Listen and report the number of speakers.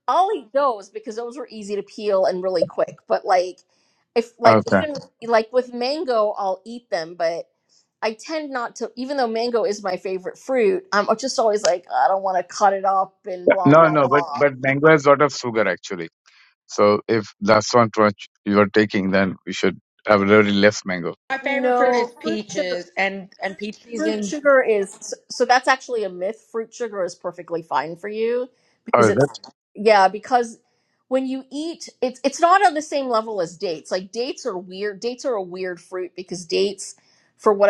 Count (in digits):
3